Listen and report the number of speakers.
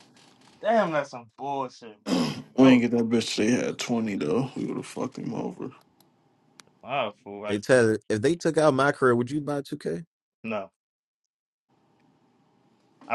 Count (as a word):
three